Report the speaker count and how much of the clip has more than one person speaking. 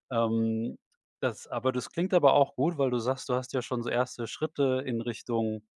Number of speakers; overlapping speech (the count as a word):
one, no overlap